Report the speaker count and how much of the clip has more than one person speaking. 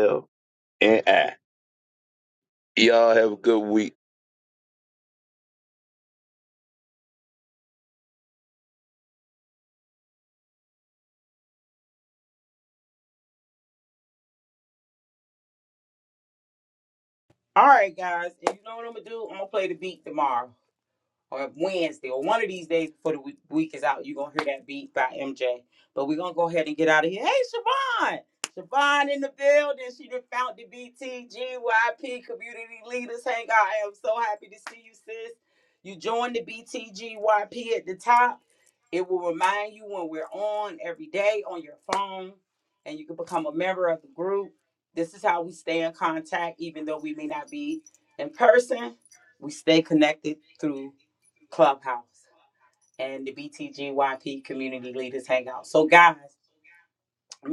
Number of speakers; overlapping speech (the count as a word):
two, no overlap